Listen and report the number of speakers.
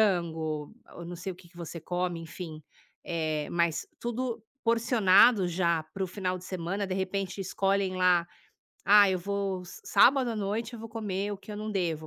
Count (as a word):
one